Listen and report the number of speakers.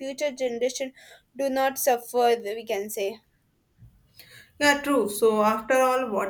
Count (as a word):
two